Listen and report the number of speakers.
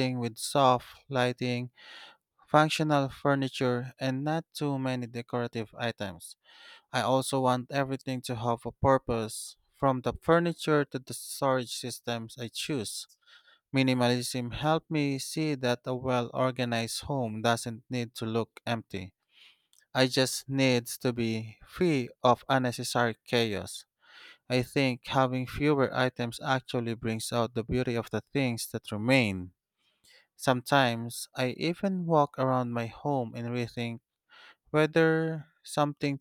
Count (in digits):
1